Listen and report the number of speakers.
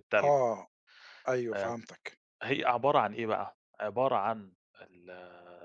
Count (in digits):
2